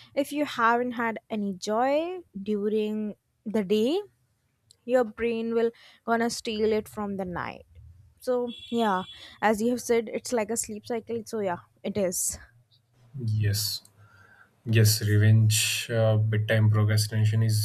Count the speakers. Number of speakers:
2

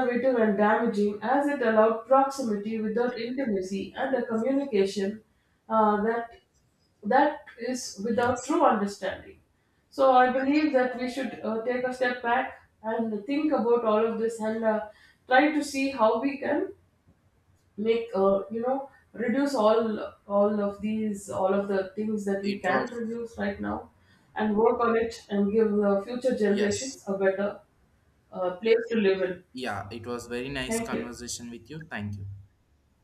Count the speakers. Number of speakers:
2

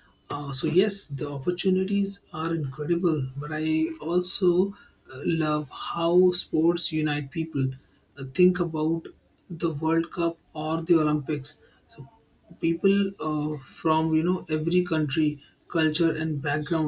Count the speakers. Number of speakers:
1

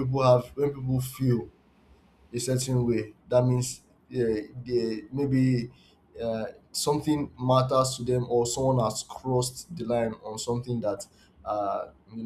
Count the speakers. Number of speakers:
1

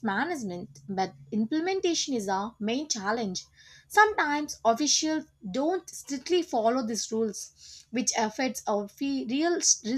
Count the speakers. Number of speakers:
1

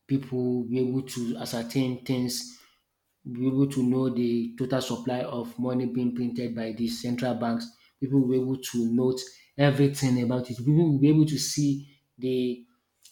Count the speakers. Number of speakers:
1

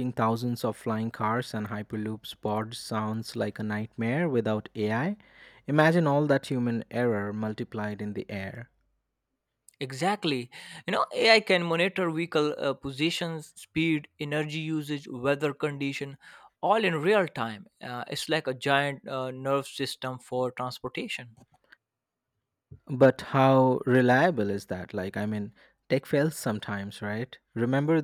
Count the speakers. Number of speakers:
2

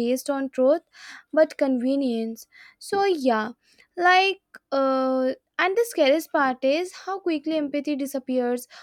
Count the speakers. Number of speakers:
1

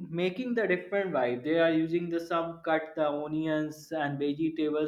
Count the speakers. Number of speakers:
1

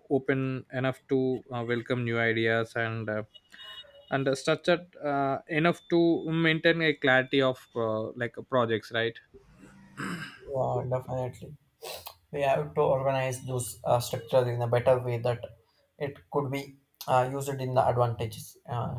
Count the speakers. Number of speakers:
2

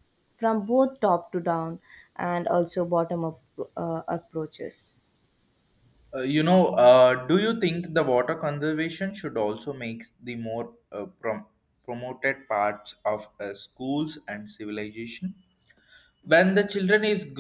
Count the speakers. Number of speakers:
2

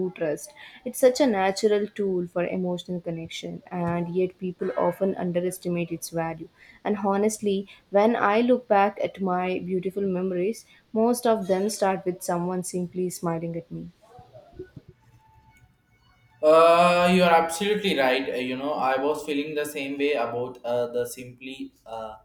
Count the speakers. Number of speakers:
2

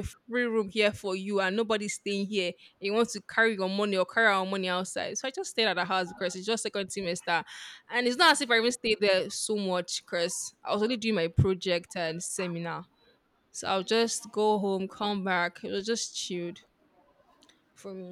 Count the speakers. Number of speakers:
1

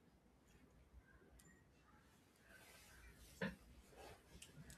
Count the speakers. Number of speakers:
0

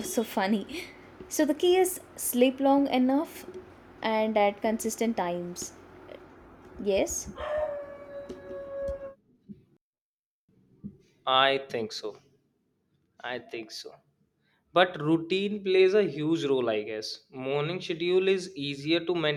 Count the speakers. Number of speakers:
2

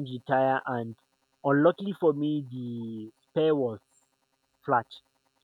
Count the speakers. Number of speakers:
1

